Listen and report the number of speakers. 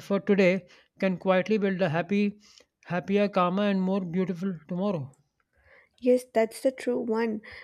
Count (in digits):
2